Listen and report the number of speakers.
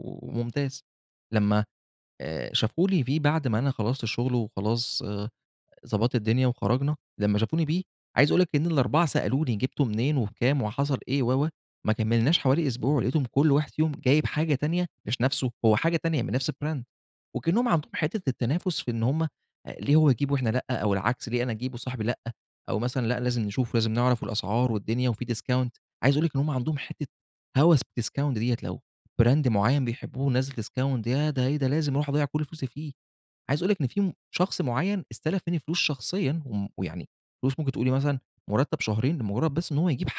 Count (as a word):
one